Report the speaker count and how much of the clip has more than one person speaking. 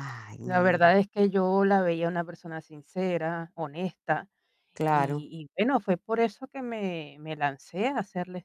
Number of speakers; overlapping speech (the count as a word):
two, about 7%